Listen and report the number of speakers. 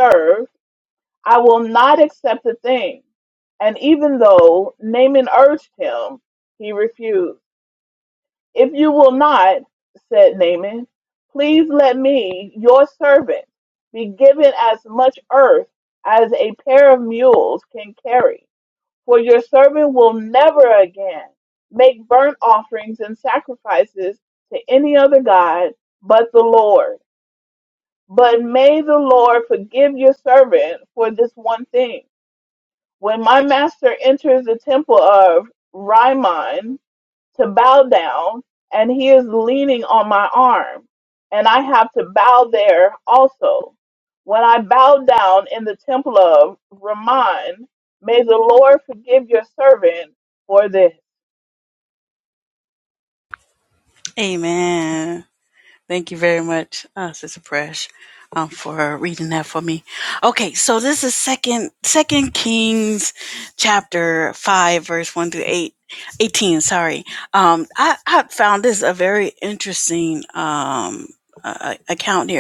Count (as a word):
two